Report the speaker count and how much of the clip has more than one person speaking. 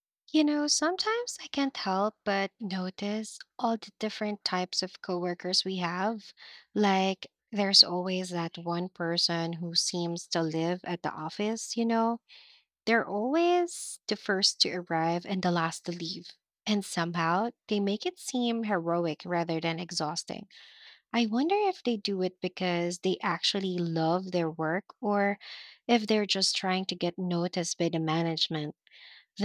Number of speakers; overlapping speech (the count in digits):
1, no overlap